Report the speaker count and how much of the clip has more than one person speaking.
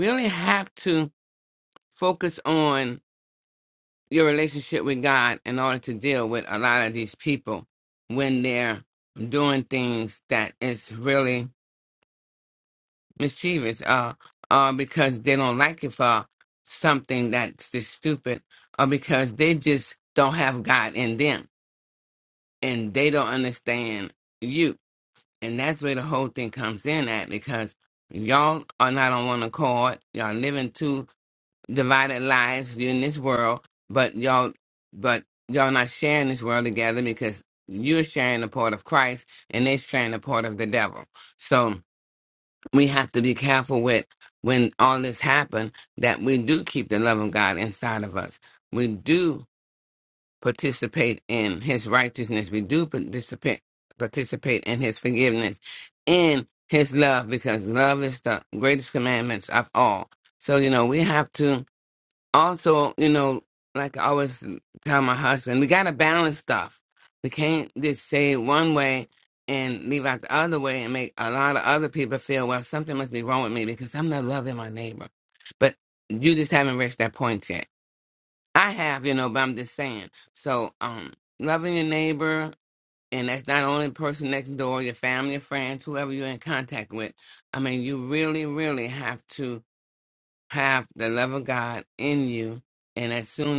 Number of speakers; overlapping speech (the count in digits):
1, no overlap